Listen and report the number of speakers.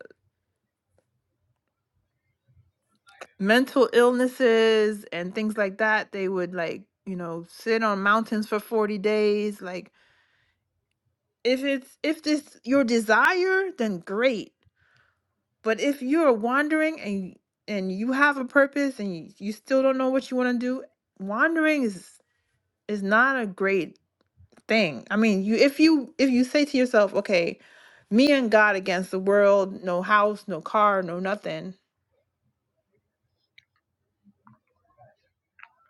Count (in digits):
1